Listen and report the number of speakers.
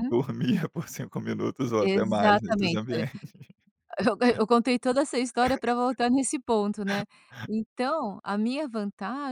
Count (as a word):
two